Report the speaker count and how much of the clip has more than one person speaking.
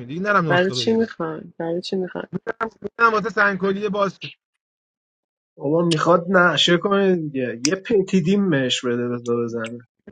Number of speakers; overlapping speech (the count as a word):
three, about 5%